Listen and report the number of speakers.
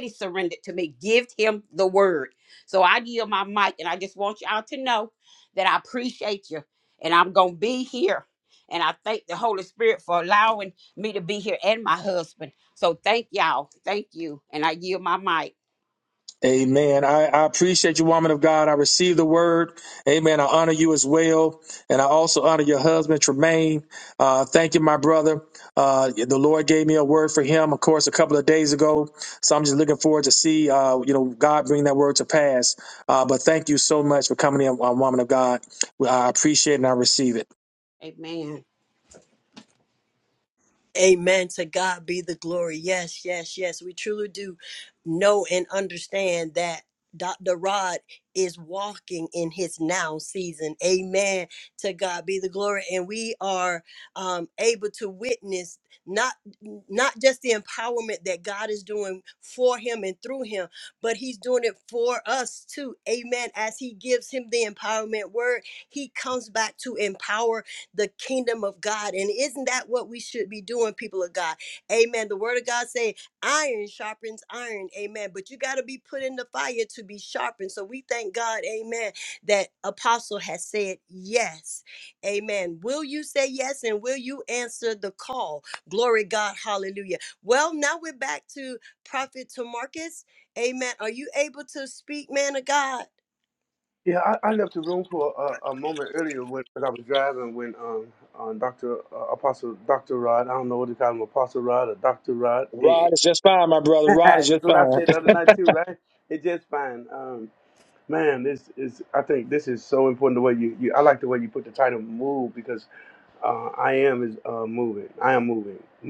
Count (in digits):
4